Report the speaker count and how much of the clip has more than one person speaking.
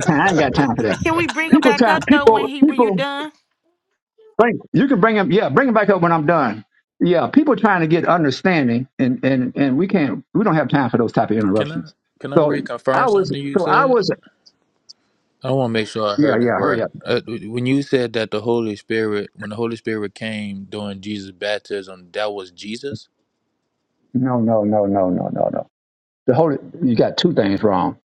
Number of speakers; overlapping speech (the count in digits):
3, about 14%